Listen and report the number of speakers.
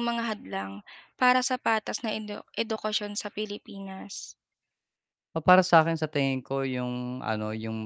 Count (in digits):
2